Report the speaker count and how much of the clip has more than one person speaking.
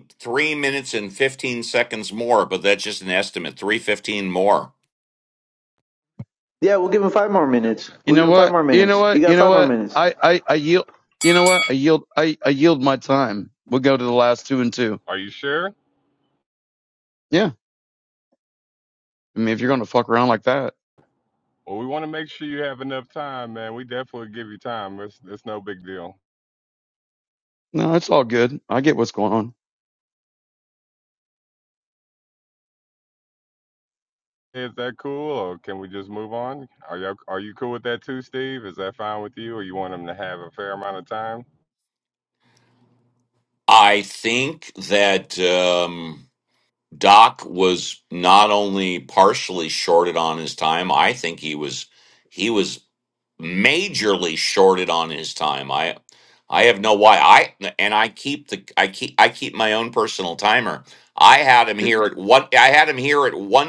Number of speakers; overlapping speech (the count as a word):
four, about 3%